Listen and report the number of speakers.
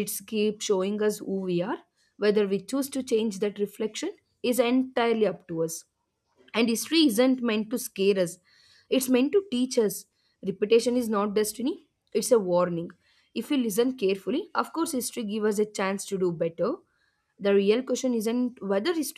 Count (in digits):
1